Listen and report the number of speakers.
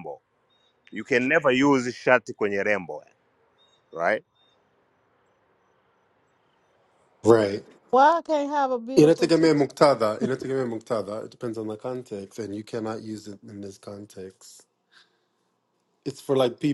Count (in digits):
3